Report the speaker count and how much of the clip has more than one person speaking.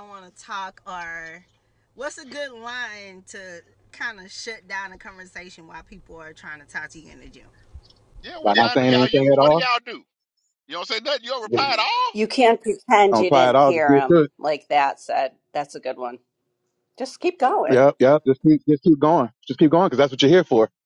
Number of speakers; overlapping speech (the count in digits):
4, about 13%